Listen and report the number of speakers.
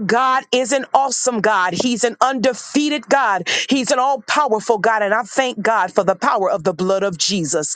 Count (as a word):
one